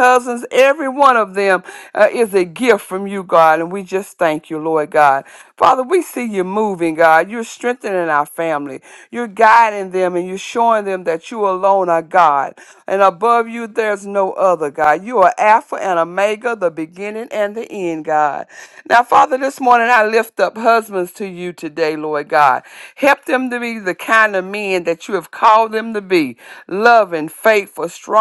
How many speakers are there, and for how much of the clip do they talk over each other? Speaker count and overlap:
1, no overlap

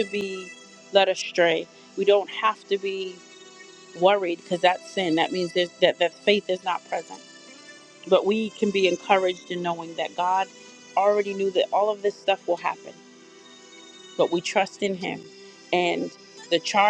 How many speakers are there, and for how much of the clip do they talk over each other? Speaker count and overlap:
1, no overlap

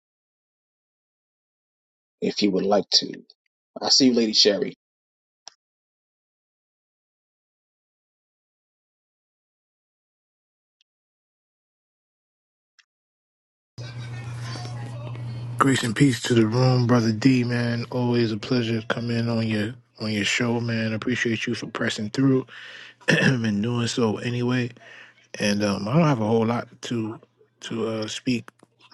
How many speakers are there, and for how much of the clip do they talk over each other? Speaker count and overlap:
2, no overlap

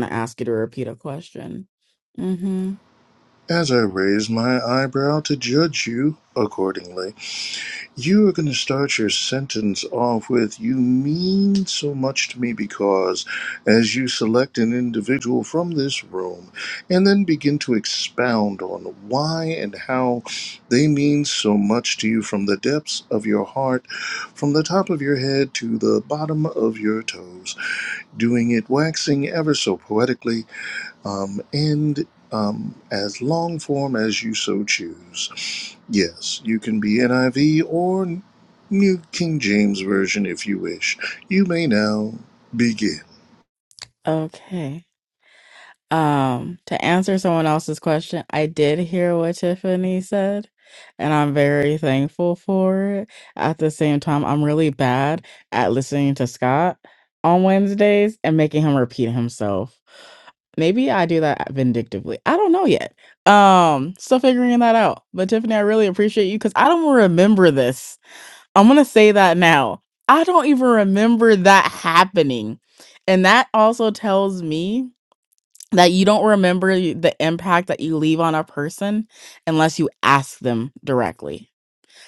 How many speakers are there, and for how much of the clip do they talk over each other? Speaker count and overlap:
2, no overlap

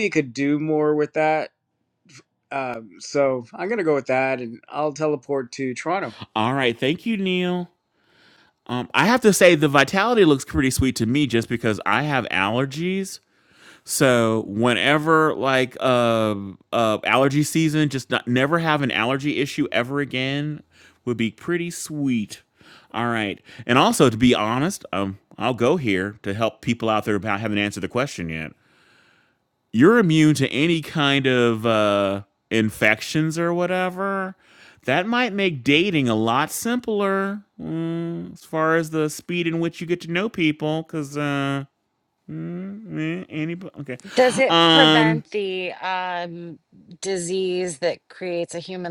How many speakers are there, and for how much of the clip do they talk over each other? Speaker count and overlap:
3, about 1%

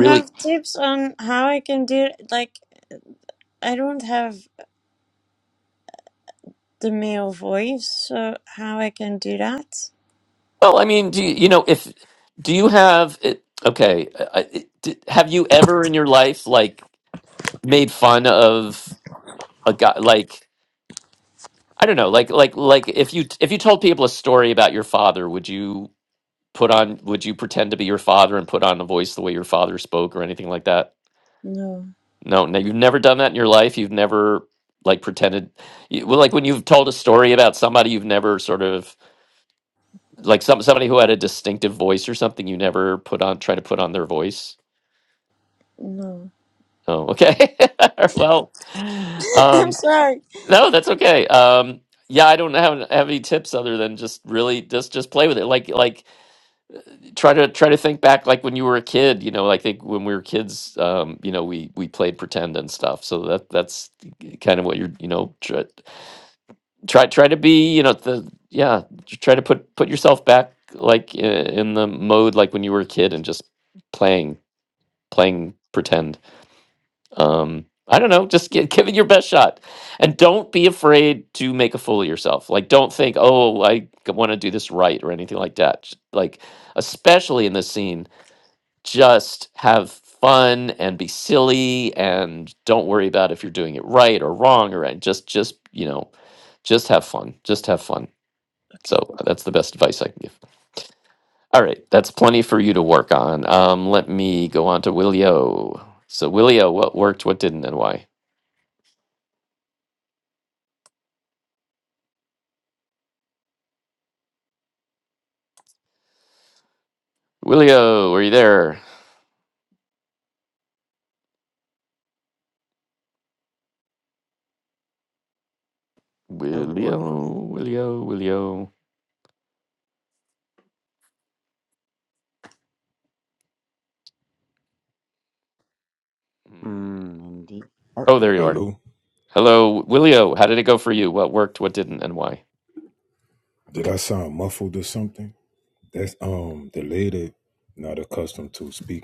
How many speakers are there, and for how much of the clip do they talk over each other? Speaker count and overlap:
4, about 1%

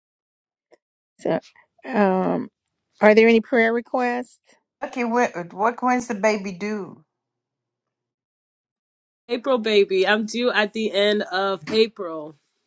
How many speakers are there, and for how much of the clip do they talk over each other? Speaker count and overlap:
3, no overlap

